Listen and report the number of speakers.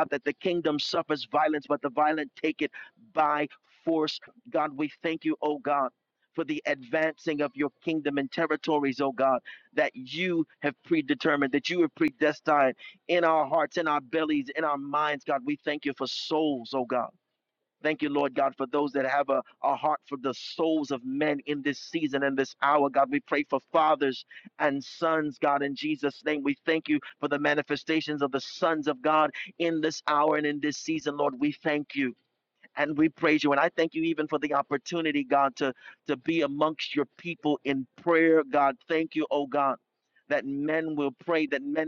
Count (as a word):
one